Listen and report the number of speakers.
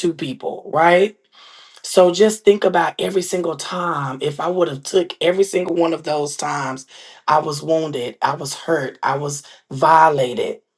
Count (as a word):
one